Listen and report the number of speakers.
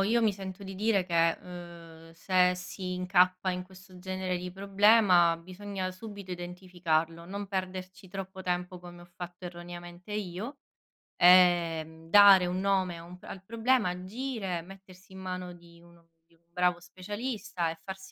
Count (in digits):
1